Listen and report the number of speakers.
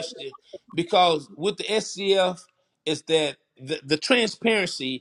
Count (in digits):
1